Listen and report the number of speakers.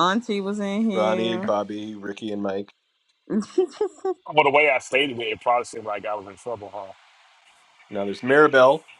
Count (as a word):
three